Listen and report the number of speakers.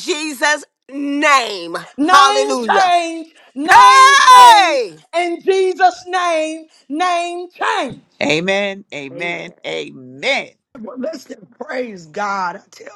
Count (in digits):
4